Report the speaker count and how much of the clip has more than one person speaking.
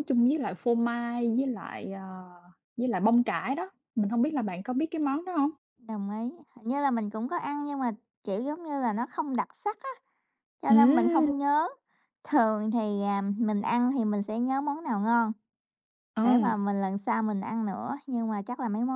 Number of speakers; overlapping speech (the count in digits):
2, about 5%